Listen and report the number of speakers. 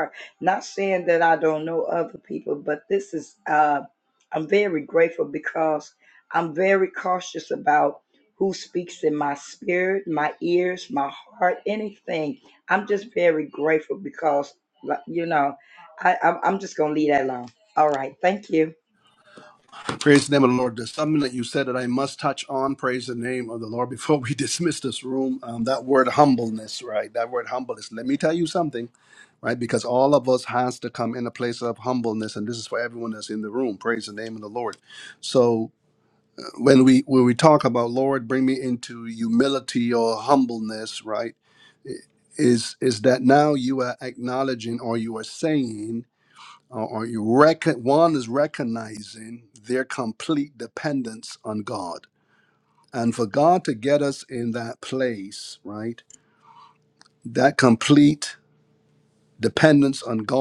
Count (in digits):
2